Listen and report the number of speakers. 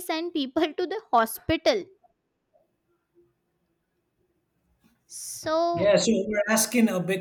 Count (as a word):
two